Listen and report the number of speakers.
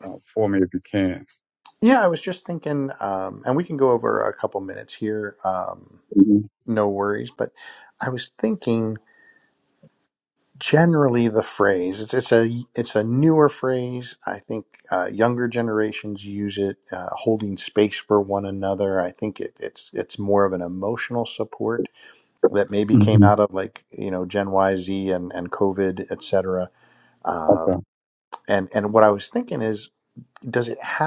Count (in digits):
2